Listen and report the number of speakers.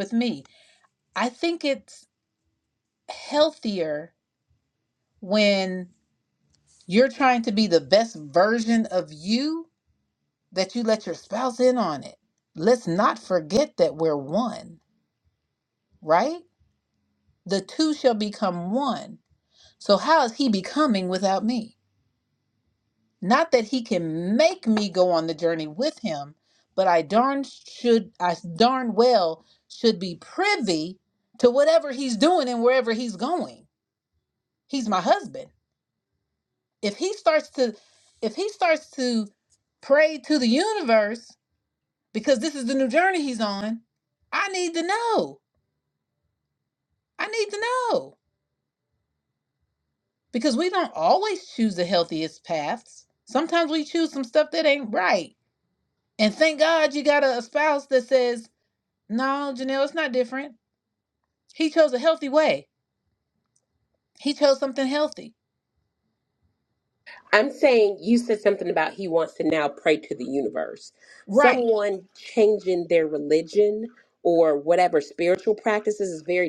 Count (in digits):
2